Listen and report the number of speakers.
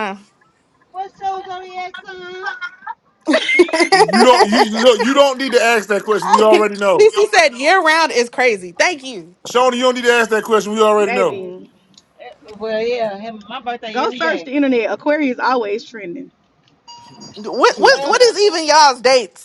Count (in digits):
4